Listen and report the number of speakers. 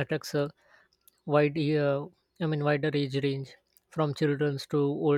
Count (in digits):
1